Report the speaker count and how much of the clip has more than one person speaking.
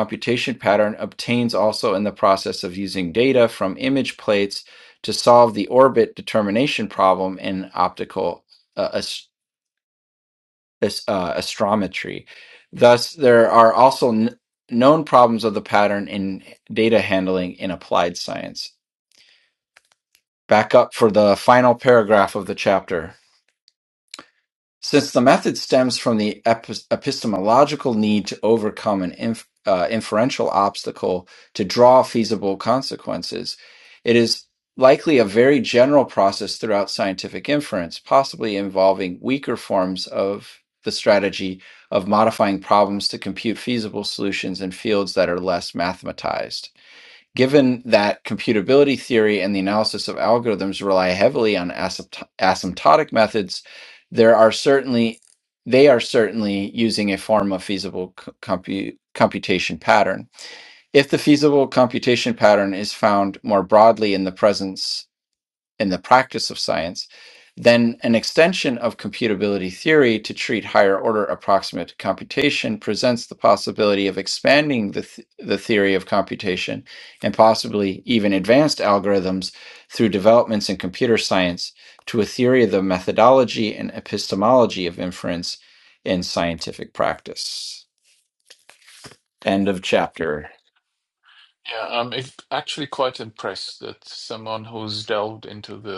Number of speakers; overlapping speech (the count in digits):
2, no overlap